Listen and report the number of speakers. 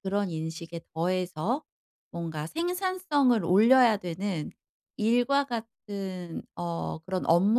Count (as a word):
one